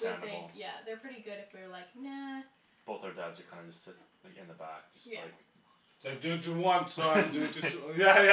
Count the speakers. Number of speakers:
three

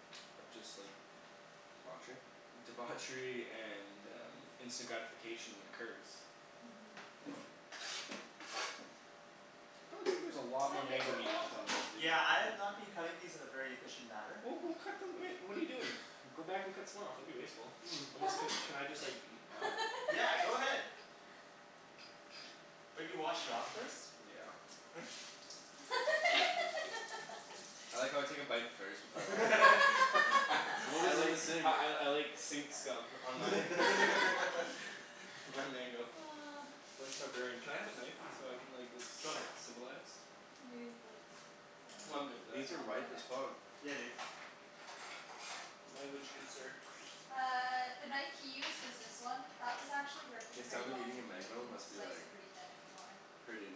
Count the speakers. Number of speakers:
four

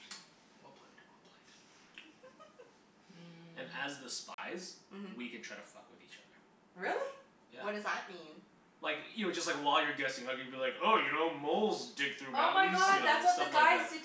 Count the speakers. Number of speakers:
four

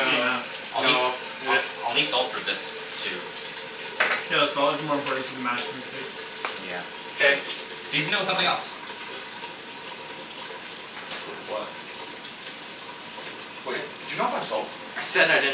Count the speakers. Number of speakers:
four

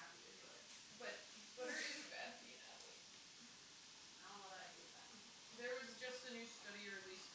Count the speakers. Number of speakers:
two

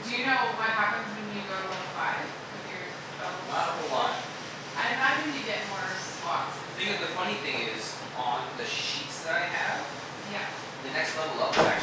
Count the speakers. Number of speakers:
two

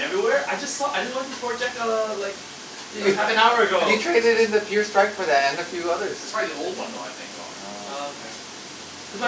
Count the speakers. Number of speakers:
three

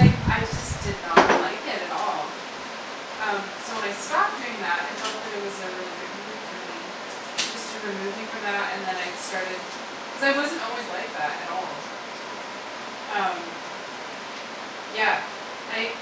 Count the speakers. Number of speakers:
one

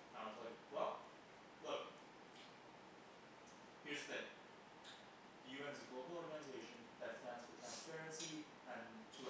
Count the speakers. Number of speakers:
one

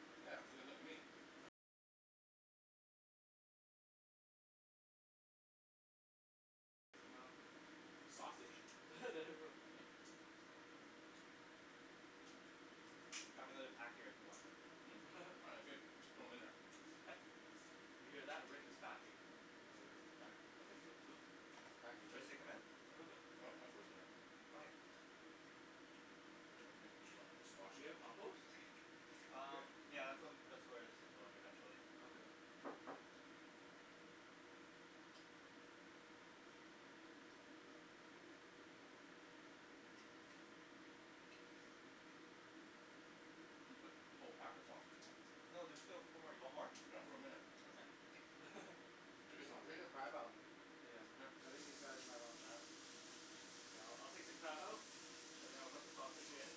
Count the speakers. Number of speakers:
four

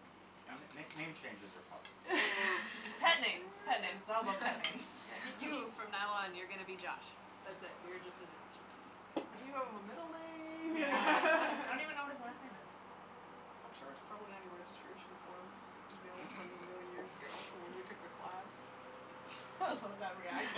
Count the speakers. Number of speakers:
four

